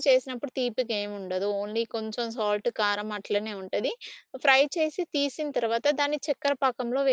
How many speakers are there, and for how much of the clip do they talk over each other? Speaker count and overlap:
1, no overlap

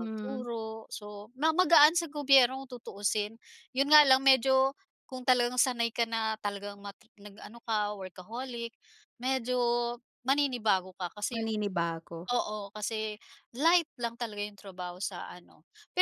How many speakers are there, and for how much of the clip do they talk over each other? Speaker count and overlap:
2, about 4%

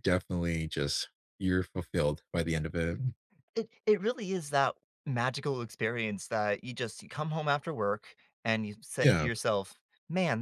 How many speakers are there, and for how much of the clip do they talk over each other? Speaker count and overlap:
2, about 3%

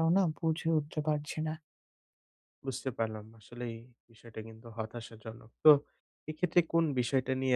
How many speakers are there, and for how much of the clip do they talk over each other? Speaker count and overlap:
2, no overlap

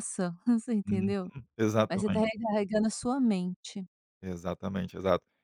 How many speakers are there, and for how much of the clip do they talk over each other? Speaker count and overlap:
2, about 10%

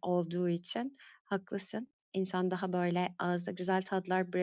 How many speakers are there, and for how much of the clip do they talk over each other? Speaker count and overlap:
1, no overlap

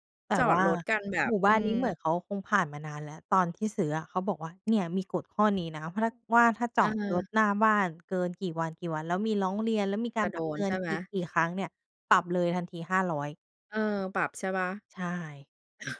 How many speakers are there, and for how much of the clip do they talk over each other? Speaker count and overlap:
2, about 13%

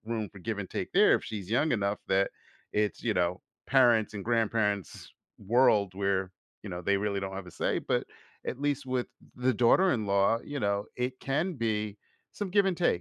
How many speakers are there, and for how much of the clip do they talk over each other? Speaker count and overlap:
1, no overlap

